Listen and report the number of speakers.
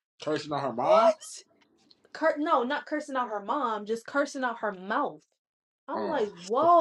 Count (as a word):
two